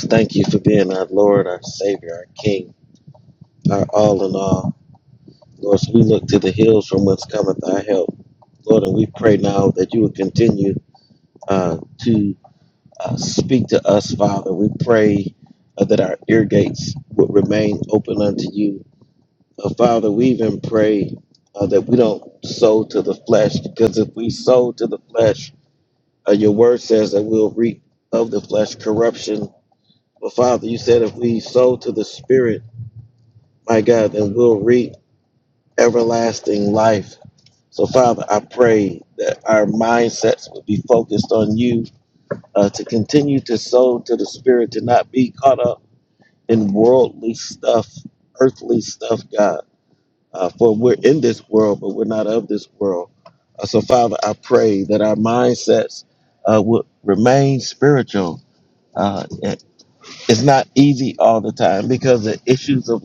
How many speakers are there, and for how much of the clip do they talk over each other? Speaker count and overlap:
1, no overlap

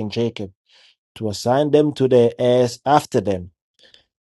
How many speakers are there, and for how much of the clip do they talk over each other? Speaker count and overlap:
1, no overlap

